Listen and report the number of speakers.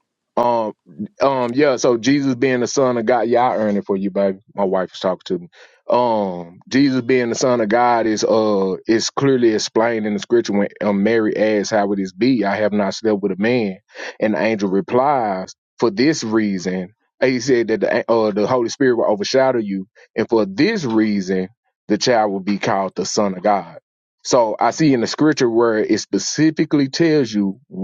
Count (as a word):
one